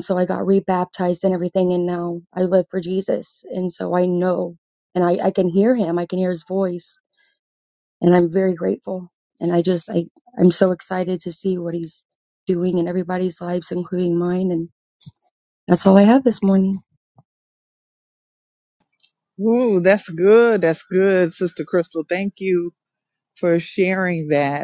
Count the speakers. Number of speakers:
two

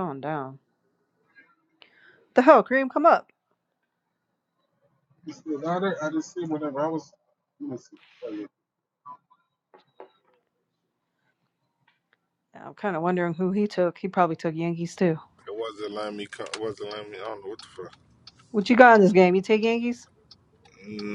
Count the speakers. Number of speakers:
three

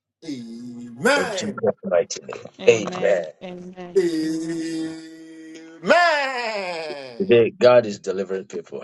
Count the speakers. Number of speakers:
three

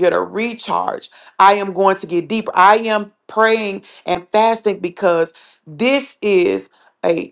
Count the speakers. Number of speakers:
one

